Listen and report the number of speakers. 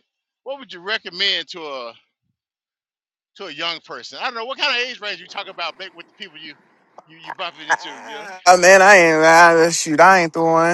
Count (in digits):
2